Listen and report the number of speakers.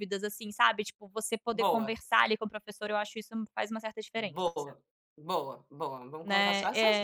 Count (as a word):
two